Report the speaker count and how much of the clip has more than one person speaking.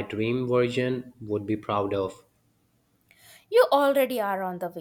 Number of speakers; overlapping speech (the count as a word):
two, no overlap